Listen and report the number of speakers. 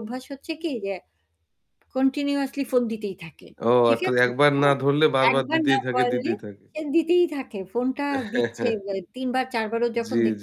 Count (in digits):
2